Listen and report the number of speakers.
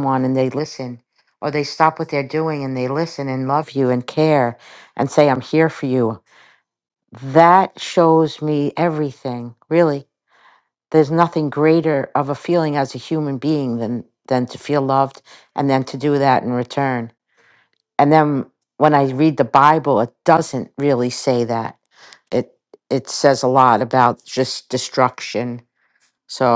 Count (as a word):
one